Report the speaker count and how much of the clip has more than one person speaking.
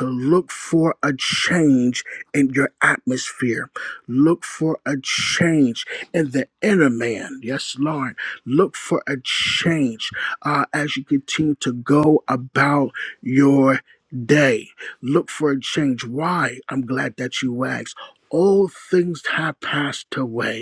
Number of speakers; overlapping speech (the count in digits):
1, no overlap